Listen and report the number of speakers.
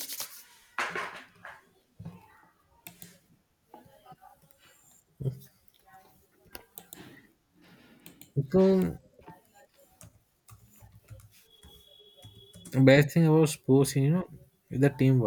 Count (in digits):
1